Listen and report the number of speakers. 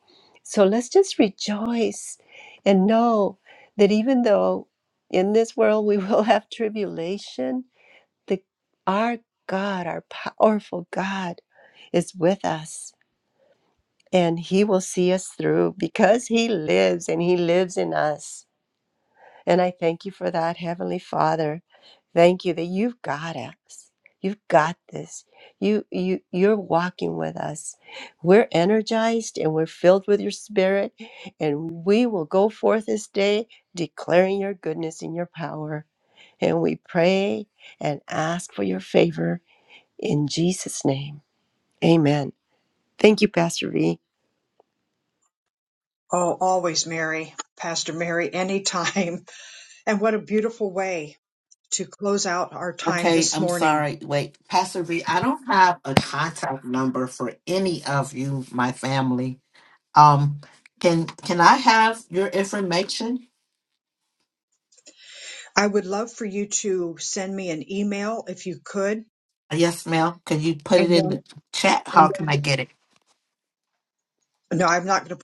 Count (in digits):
3